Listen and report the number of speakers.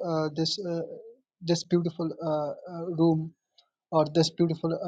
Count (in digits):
1